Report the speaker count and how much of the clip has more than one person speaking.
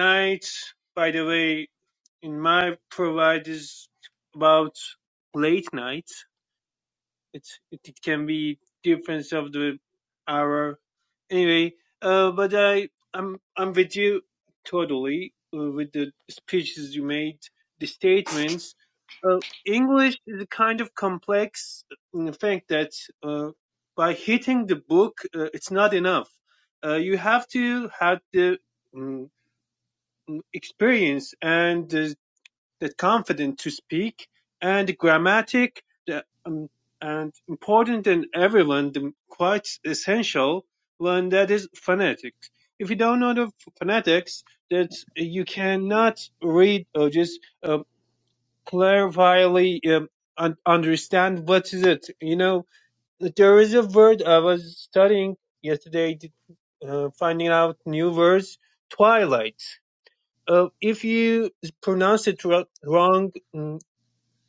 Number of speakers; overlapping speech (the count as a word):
one, no overlap